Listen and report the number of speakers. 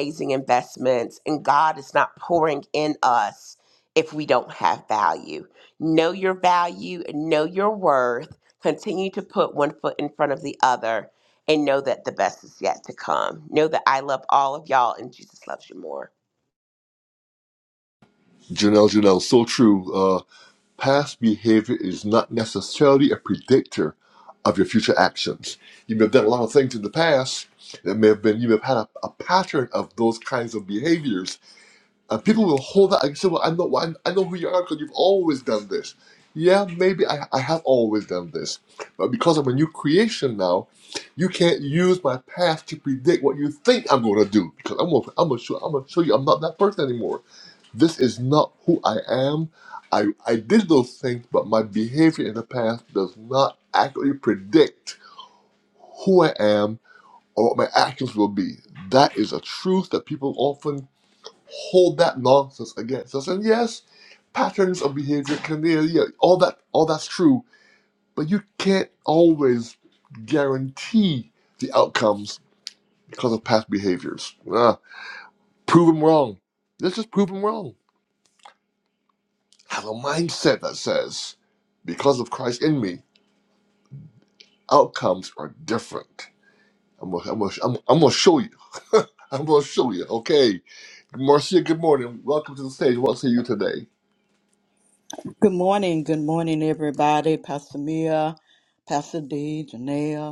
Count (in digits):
3